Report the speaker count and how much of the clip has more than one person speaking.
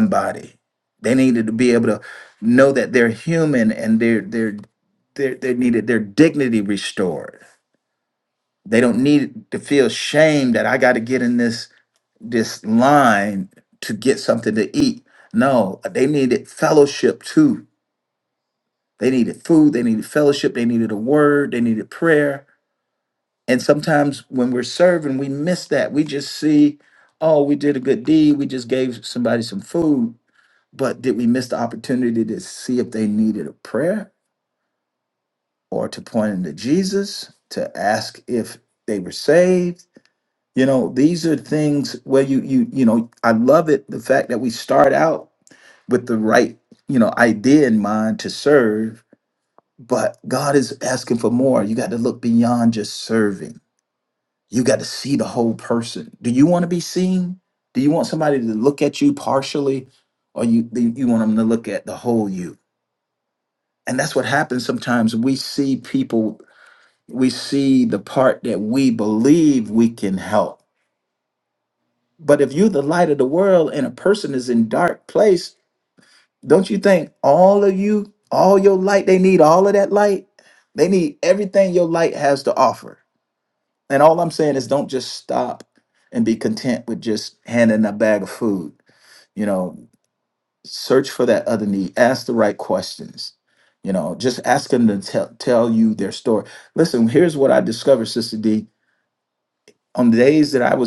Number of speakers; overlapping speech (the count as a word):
one, no overlap